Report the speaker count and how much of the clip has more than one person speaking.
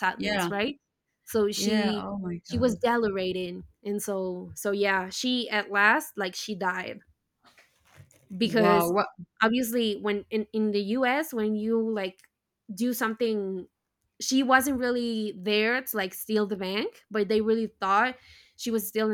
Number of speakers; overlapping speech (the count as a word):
two, about 7%